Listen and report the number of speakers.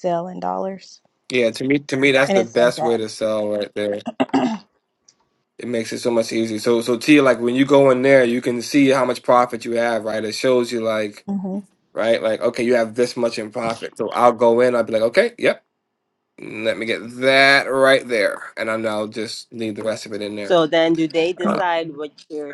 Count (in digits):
3